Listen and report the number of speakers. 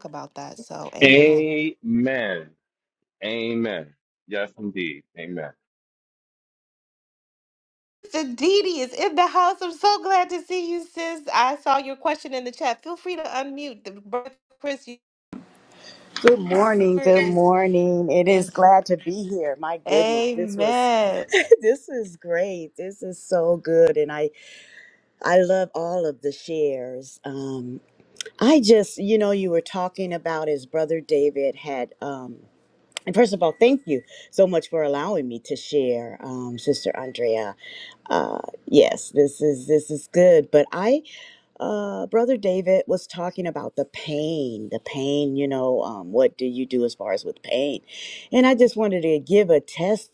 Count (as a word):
three